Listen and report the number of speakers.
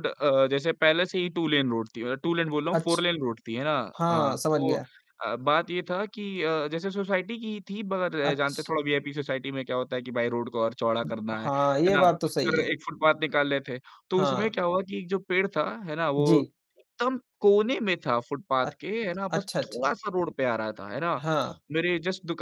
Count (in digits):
2